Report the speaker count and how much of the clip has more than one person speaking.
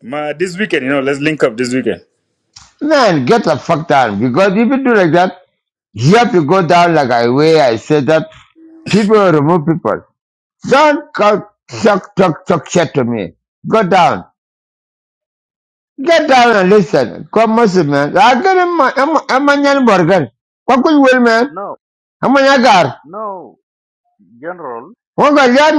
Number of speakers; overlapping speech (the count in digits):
3, no overlap